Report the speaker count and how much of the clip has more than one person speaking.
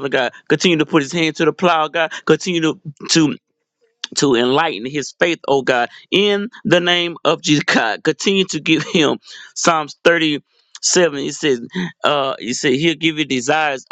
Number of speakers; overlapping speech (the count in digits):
1, no overlap